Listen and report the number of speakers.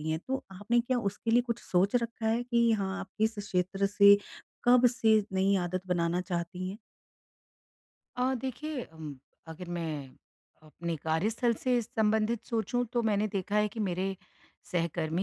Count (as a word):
two